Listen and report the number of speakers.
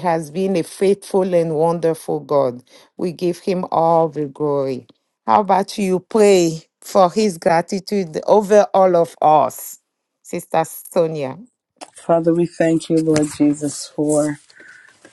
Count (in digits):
2